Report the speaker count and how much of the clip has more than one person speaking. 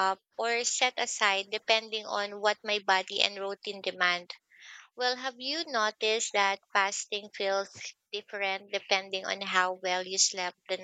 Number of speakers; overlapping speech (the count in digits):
1, no overlap